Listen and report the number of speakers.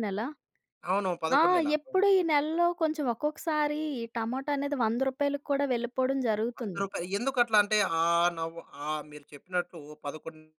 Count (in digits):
2